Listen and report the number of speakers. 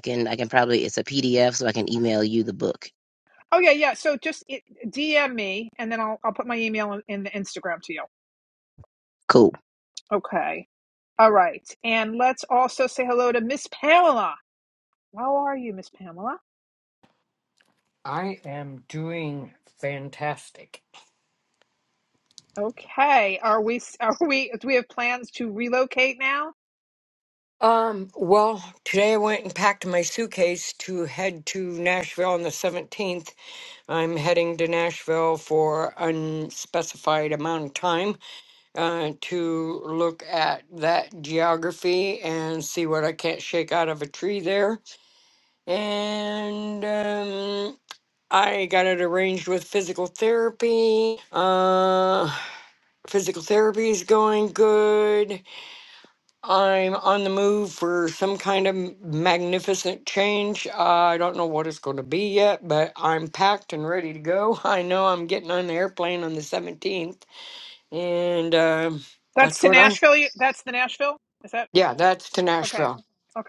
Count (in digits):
3